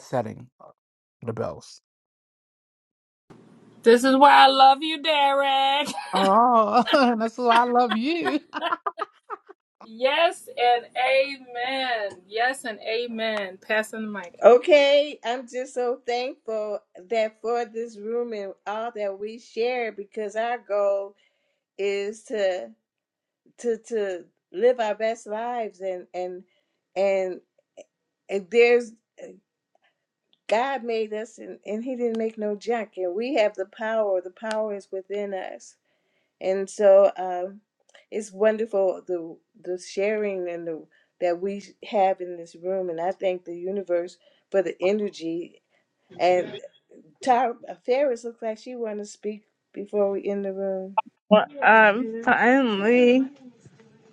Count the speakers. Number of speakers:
four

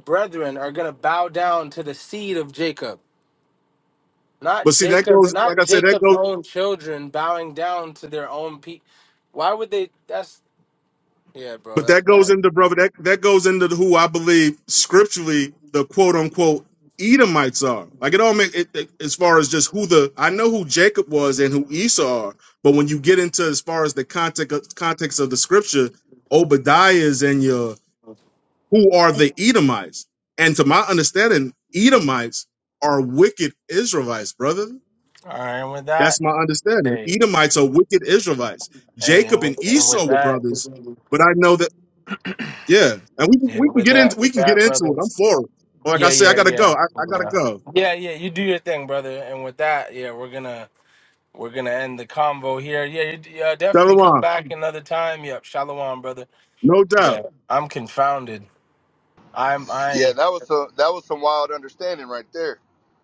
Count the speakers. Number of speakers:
three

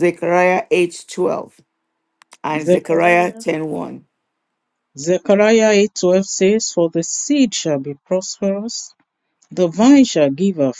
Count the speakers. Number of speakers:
two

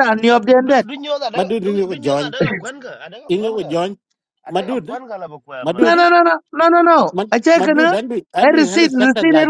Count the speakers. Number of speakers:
three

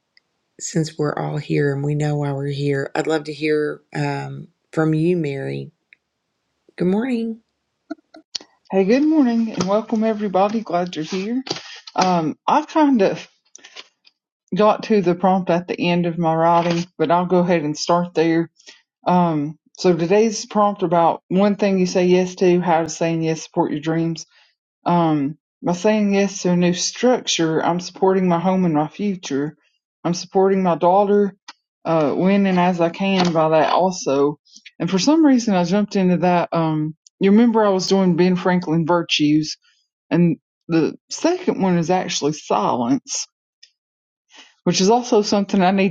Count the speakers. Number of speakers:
two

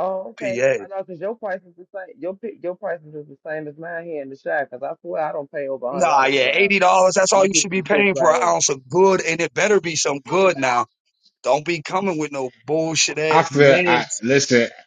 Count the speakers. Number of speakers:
three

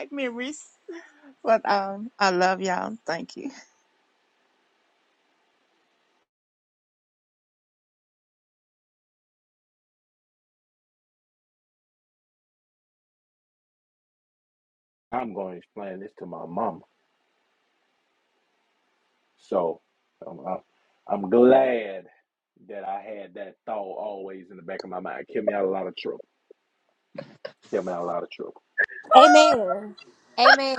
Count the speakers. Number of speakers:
three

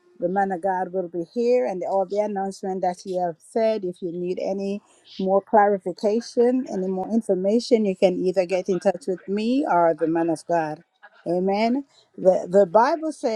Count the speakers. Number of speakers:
one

